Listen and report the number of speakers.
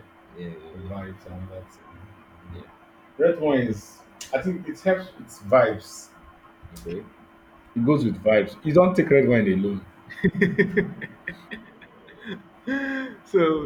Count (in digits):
2